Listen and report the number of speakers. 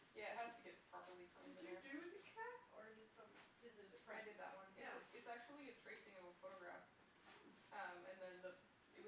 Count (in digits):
2